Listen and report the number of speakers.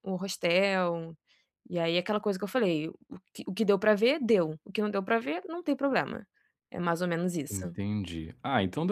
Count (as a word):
two